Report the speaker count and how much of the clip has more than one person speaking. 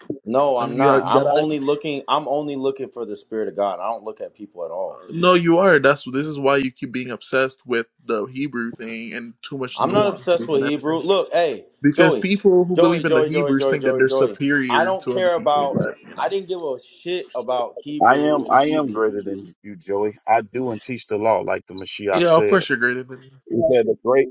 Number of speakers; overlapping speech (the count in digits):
3, about 28%